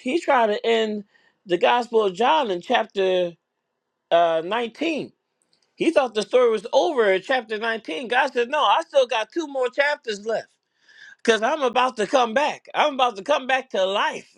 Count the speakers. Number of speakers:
one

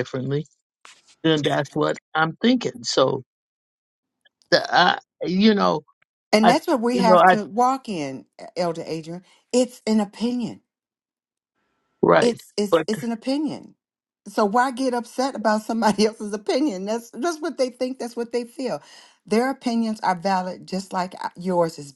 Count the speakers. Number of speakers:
two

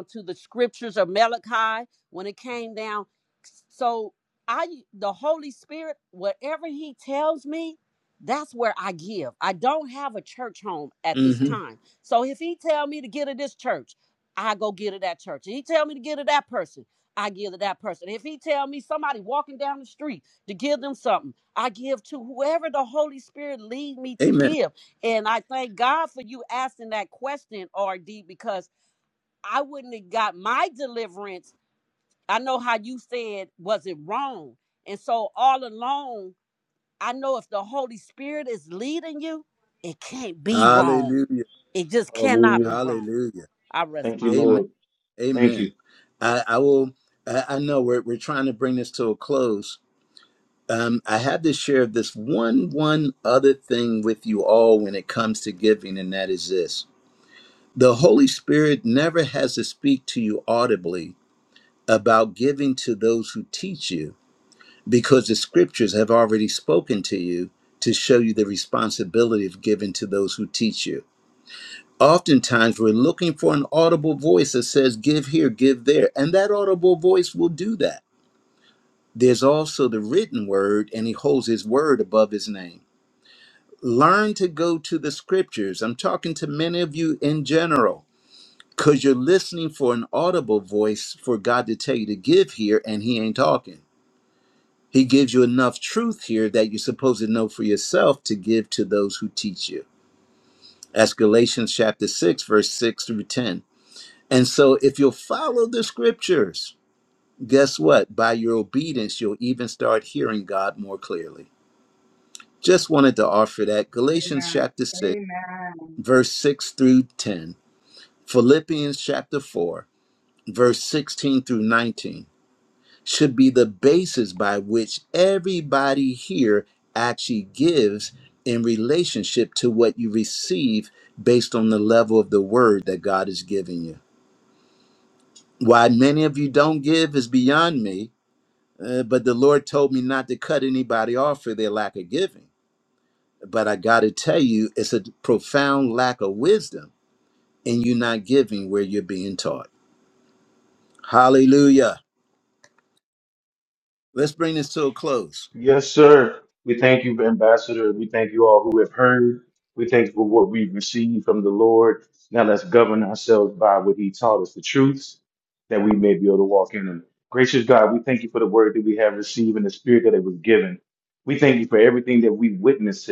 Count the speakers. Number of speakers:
four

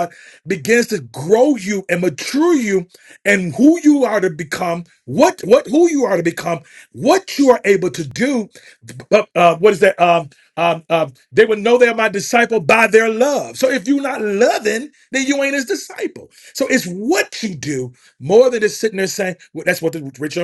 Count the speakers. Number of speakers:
one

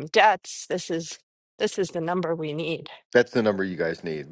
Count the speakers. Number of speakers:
two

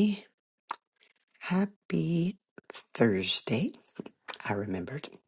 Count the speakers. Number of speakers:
one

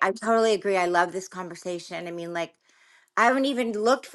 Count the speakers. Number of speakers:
one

